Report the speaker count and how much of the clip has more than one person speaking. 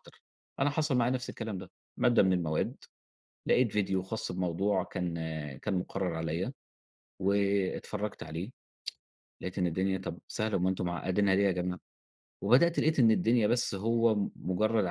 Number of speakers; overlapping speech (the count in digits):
1, no overlap